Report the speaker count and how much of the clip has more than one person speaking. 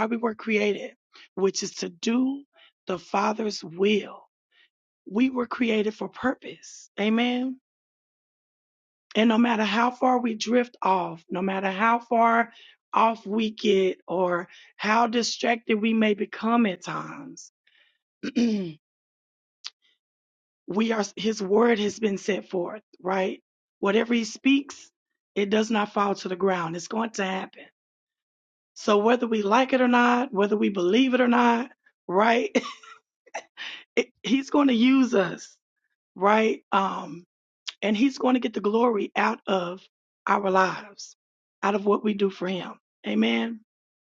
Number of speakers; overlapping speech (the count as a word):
one, no overlap